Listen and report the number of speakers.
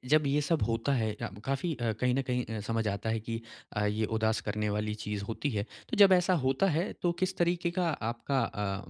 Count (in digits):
1